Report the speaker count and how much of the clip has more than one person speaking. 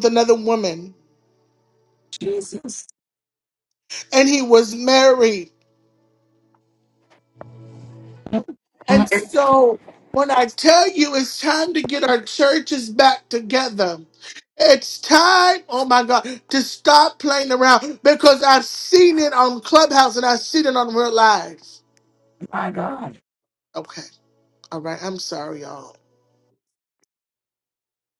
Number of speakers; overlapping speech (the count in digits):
2, no overlap